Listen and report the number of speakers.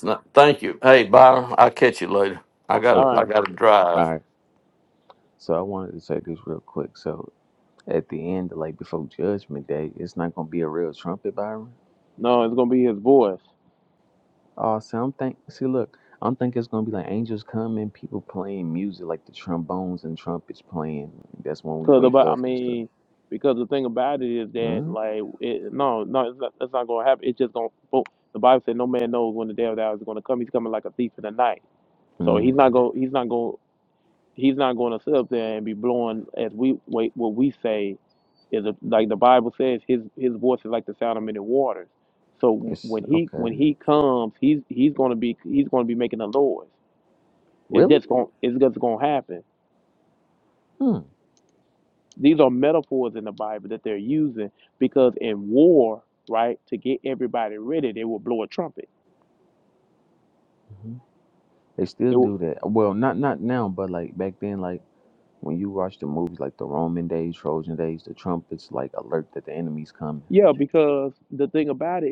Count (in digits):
3